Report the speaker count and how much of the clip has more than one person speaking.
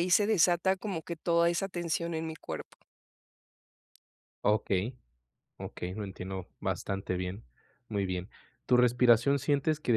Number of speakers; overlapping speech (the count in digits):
2, no overlap